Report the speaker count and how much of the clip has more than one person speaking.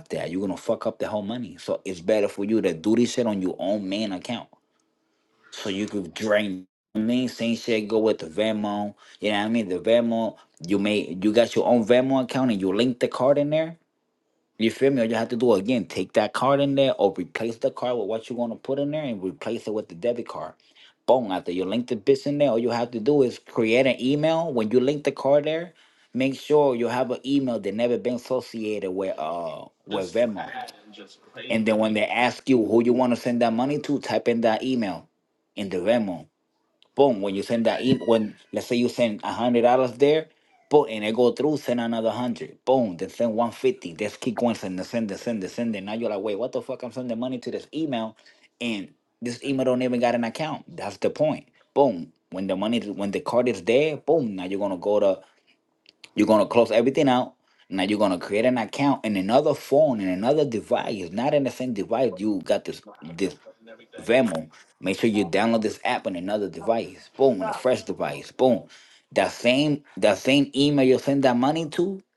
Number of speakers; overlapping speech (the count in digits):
1, no overlap